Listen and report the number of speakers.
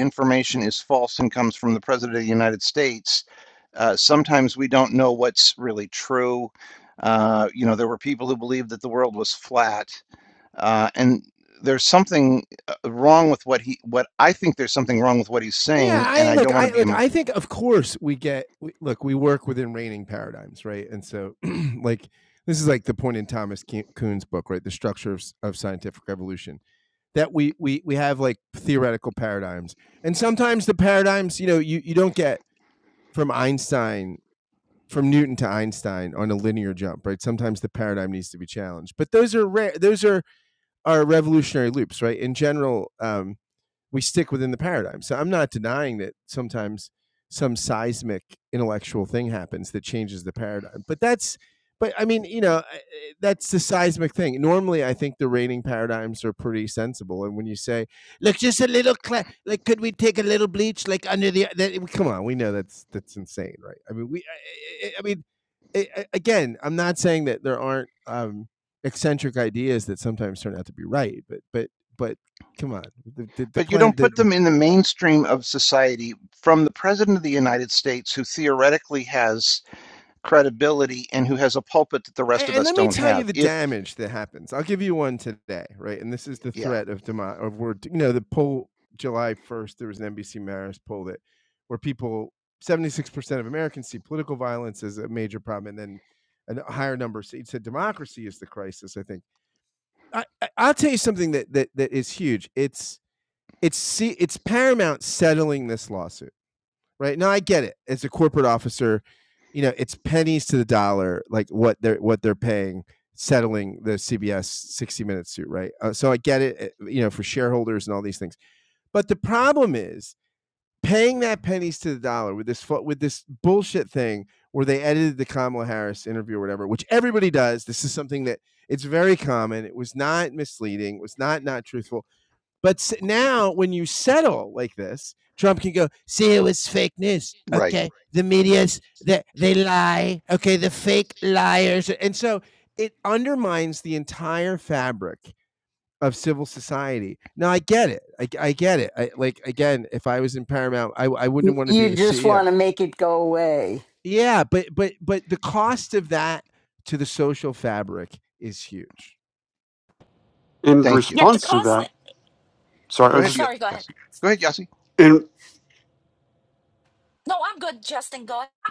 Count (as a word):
five